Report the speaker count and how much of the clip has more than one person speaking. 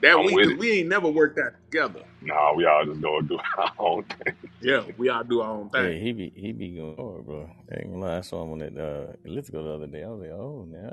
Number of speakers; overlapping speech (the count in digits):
3, about 6%